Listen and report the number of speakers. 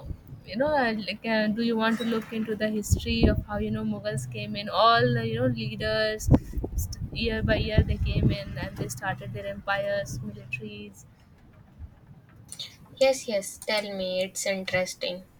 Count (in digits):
2